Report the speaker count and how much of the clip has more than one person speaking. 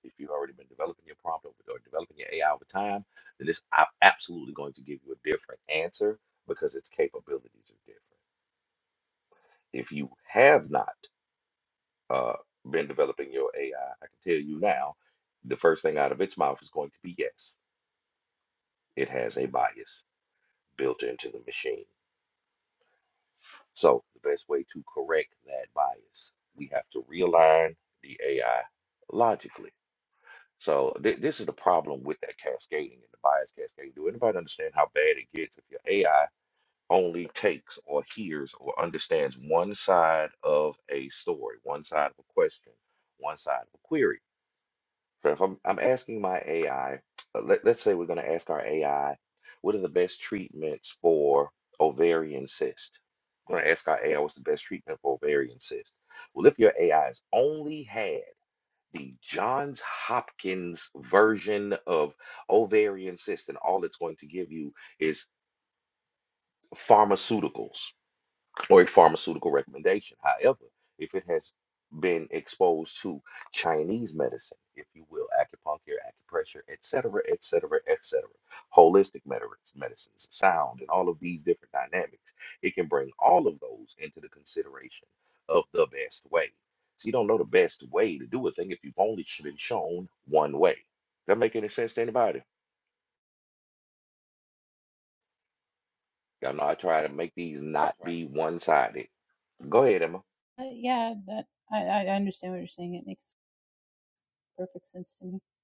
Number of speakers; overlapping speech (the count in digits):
2, no overlap